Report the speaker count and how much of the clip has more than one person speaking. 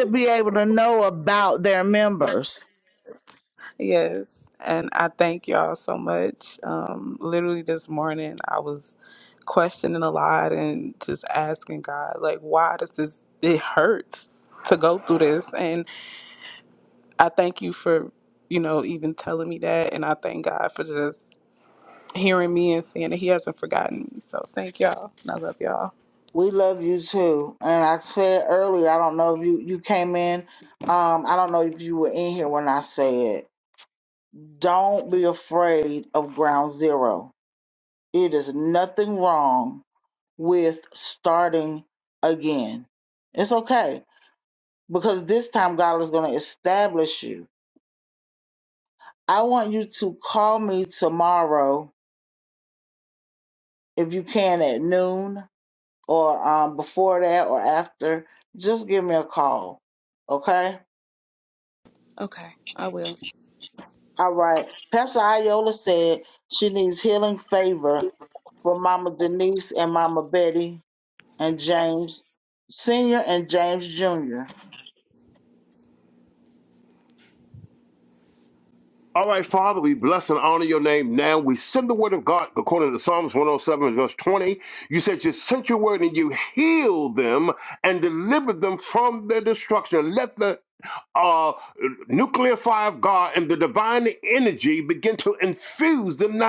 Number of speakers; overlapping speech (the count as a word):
three, no overlap